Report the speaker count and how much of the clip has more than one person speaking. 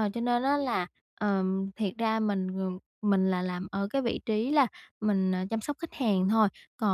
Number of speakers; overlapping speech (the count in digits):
1, no overlap